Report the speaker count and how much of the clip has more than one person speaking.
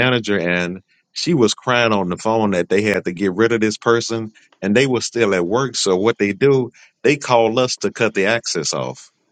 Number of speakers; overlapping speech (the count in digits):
1, no overlap